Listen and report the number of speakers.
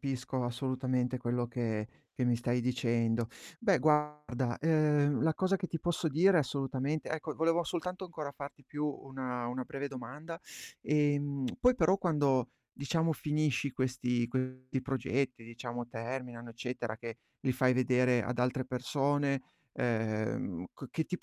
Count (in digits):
1